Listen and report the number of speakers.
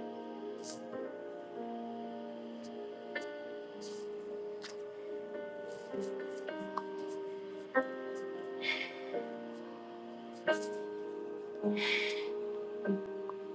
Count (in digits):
0